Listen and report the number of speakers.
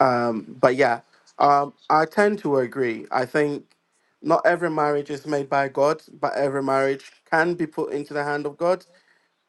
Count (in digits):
1